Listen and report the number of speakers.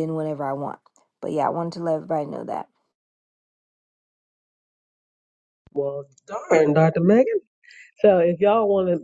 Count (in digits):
2